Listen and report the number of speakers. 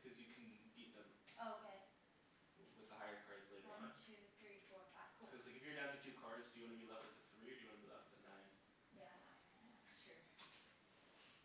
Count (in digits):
2